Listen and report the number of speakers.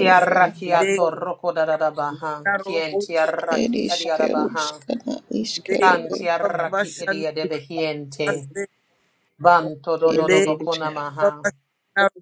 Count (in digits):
3